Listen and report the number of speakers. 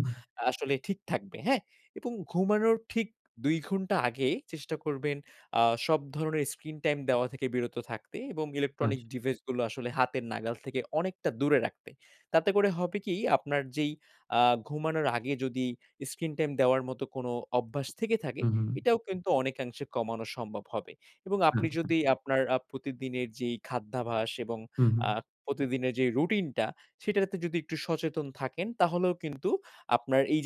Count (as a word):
two